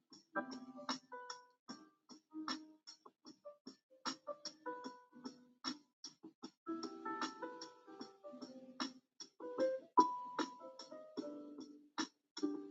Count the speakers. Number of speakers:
0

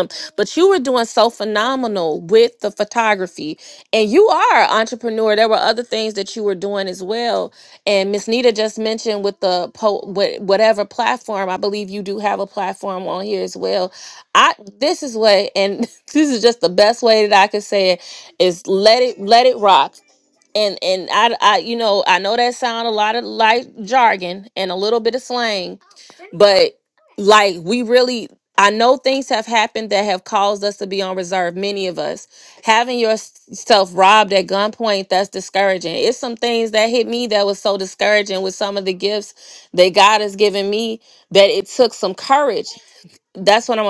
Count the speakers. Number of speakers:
1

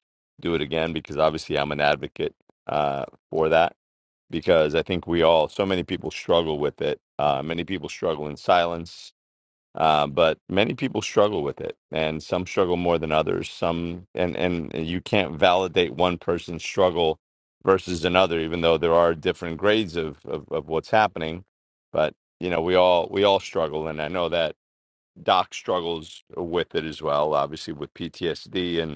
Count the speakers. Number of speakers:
1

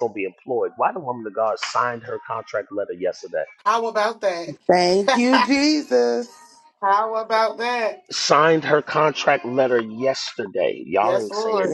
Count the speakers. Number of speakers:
3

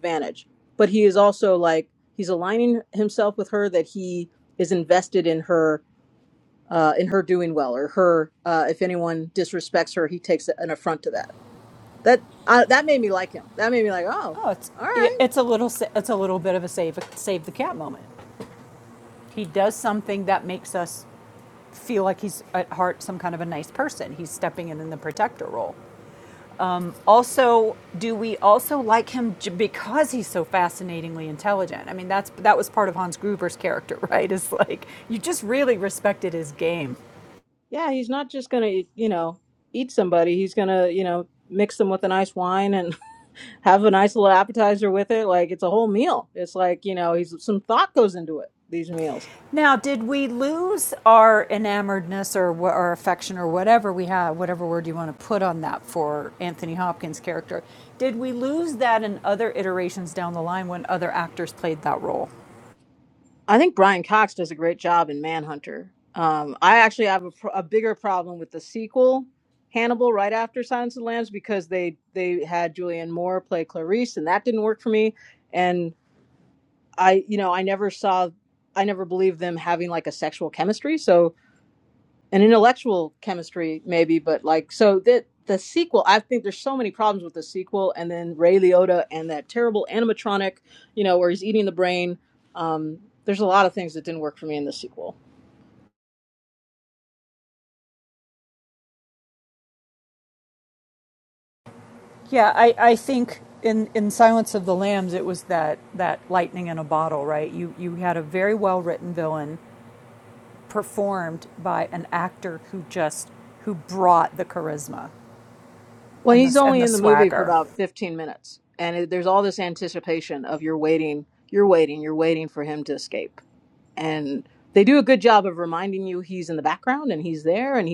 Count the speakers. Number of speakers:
2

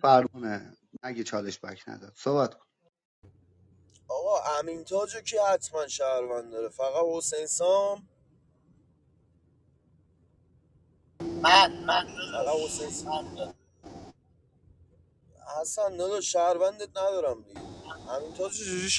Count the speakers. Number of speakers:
3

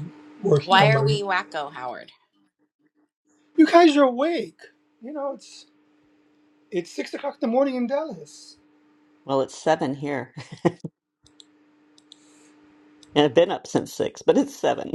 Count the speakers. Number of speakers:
3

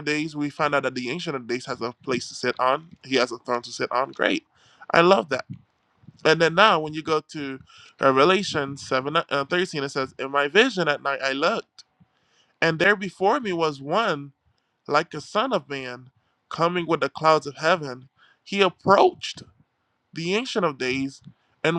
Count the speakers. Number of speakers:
1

